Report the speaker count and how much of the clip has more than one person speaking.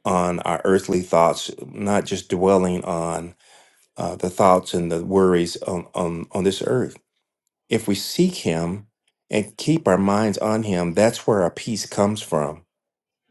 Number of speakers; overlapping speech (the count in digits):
1, no overlap